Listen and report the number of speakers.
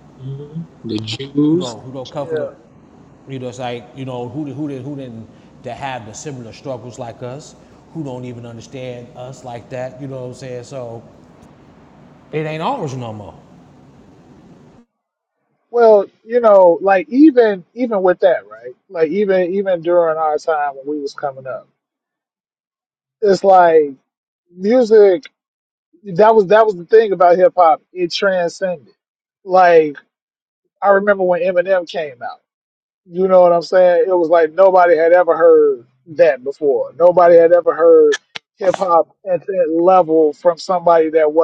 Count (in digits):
3